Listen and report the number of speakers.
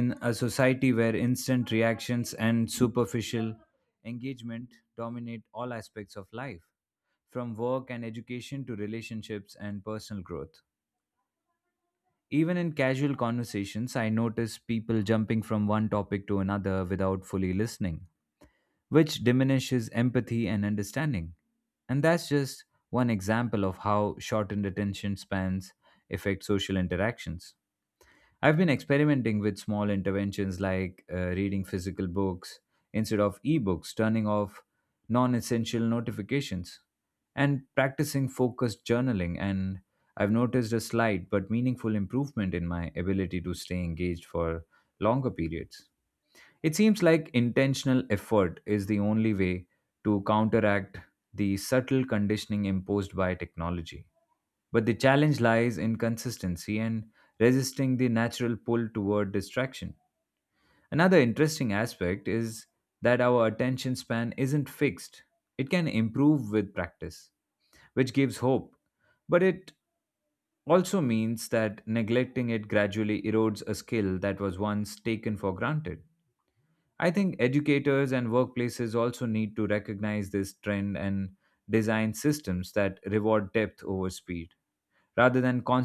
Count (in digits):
1